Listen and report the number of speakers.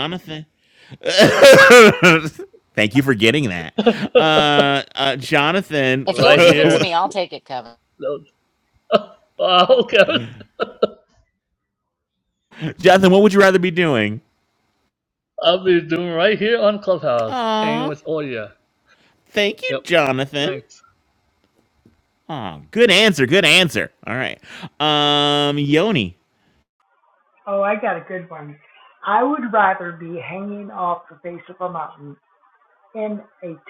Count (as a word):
four